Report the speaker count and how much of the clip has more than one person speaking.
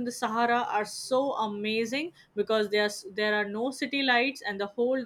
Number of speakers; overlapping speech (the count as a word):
one, no overlap